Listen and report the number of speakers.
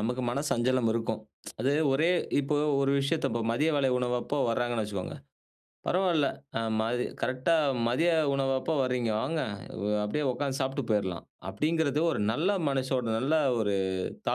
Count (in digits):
1